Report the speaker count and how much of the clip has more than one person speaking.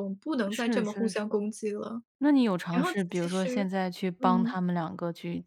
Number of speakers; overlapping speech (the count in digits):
2, about 37%